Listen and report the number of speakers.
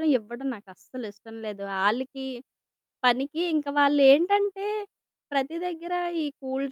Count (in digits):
1